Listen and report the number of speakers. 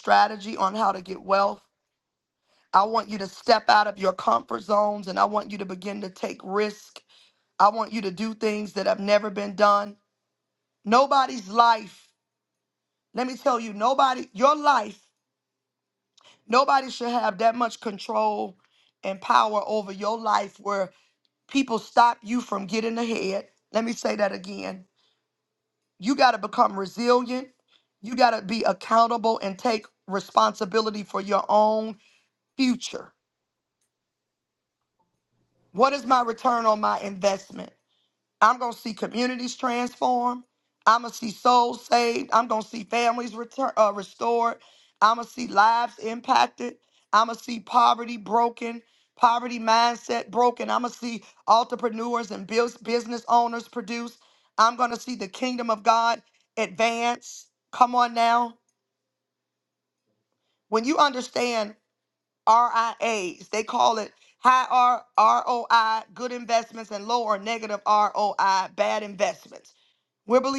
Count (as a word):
one